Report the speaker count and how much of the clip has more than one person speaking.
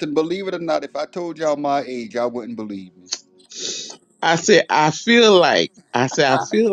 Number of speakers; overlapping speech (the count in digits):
2, no overlap